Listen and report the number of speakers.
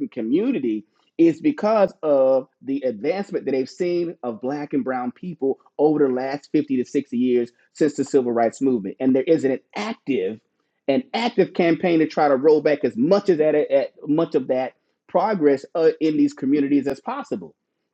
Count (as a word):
one